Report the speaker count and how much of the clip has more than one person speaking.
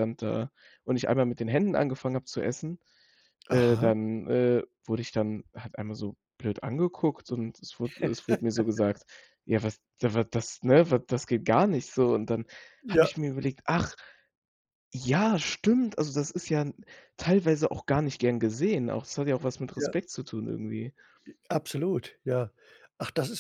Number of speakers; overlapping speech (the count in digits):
2, about 4%